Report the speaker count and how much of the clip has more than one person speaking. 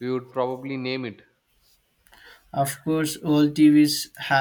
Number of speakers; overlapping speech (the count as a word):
two, no overlap